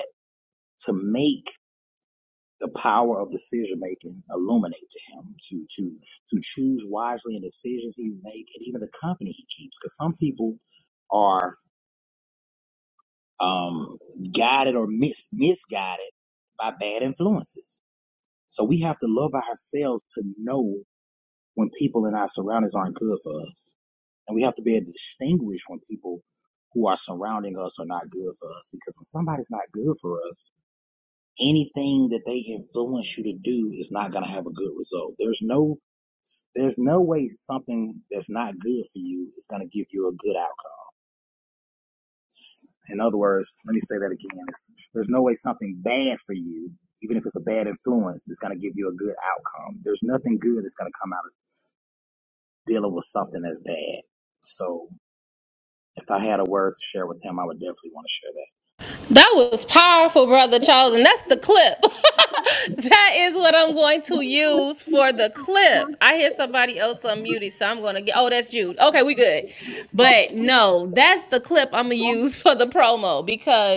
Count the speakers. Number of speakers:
two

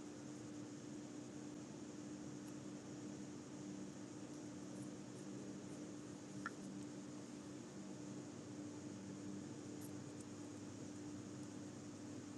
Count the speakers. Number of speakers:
zero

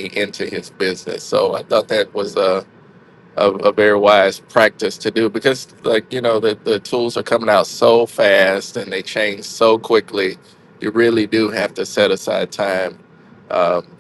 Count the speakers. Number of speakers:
one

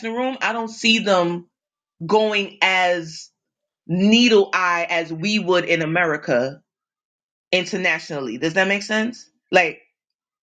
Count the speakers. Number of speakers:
one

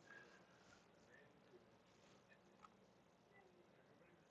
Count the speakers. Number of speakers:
zero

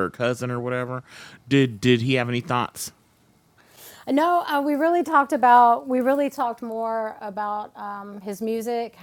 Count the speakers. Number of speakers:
two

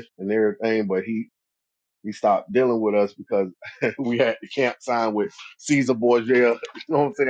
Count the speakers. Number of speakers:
one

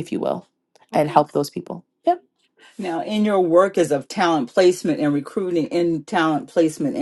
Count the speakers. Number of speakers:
two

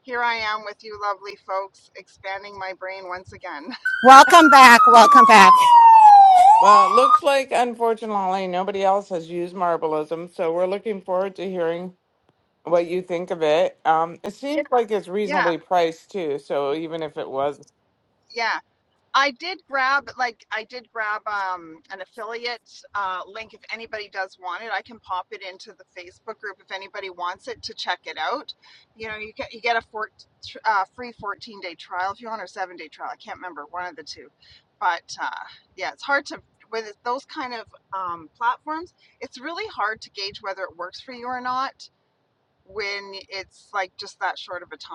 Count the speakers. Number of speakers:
three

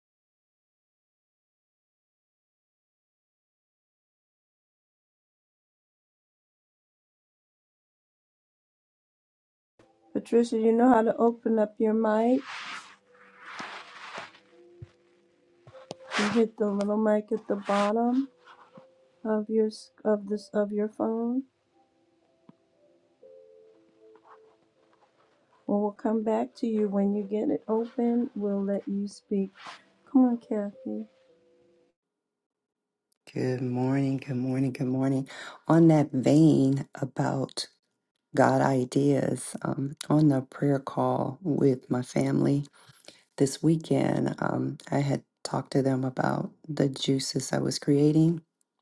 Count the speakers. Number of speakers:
two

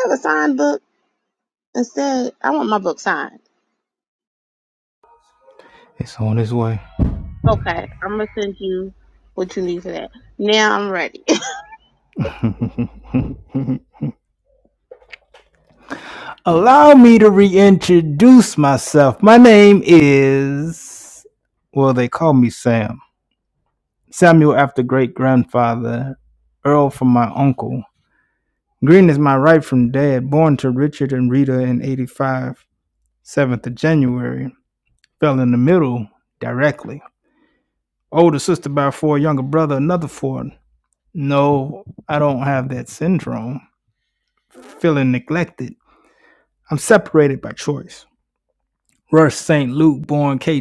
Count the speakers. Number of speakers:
two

